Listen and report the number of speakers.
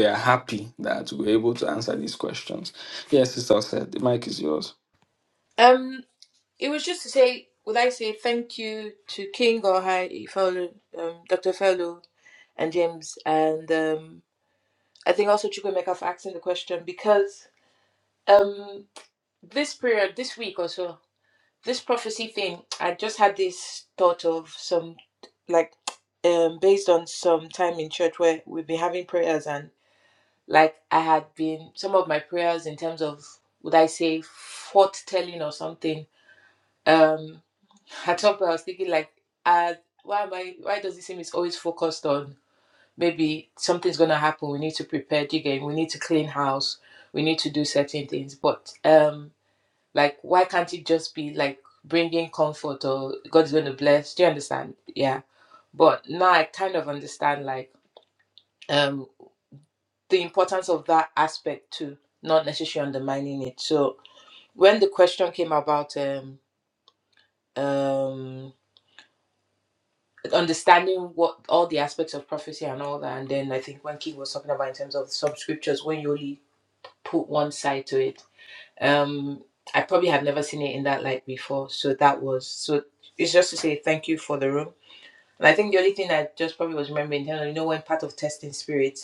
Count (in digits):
2